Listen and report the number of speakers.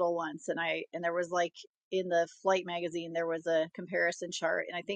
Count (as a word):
one